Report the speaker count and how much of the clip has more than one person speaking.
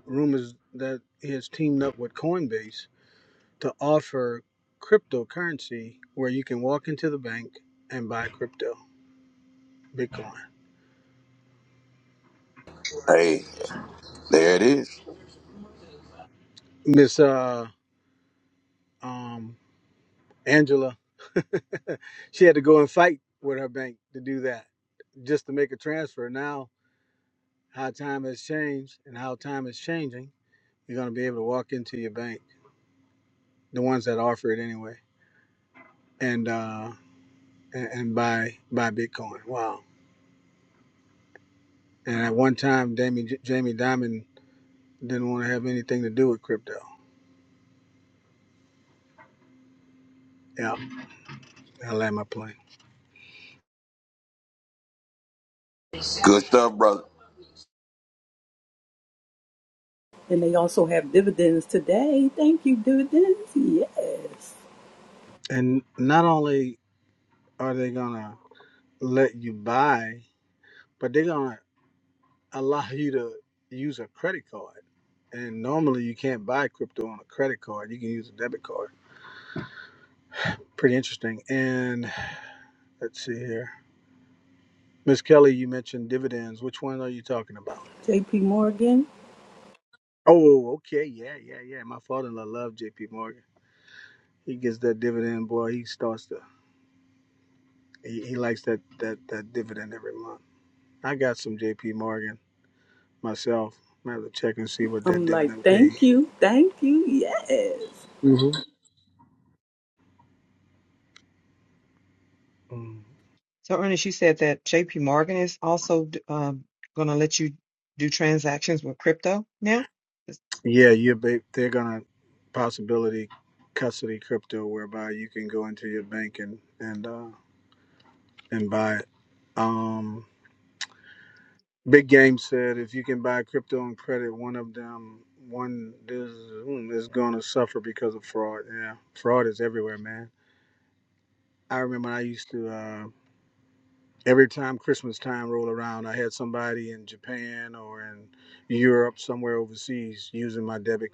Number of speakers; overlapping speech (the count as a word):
four, about 1%